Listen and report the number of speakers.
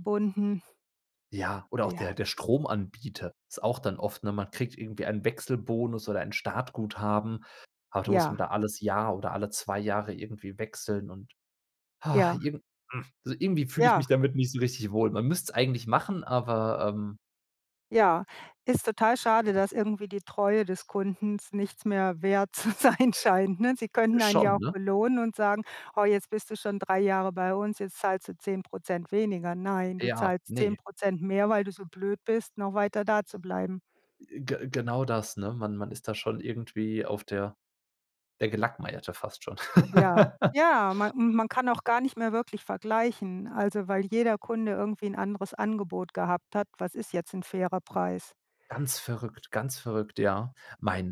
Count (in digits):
2